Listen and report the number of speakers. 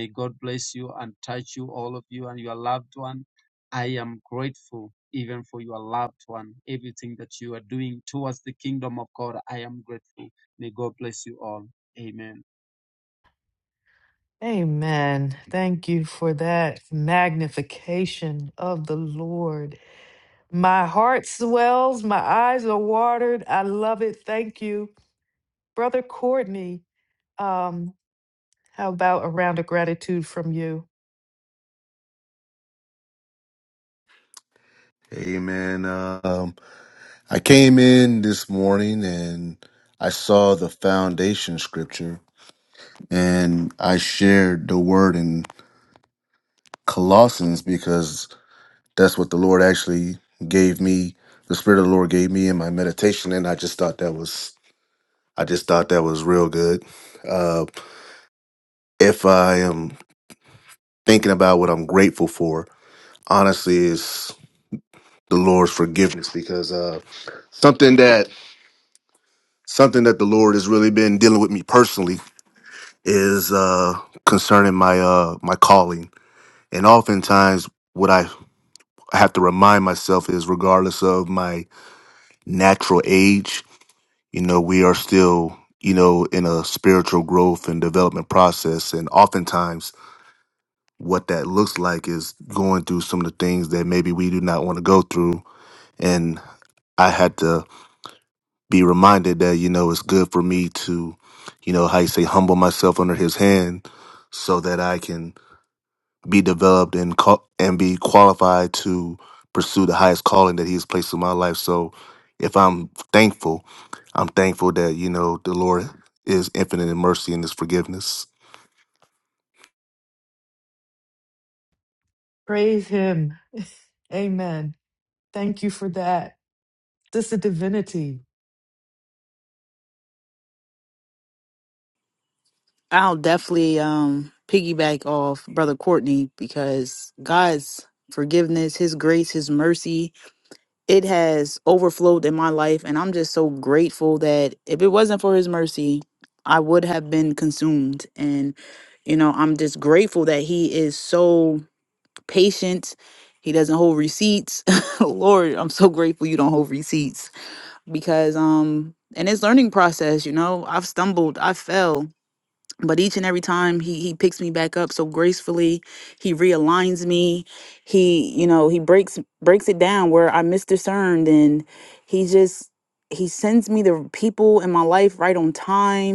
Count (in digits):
4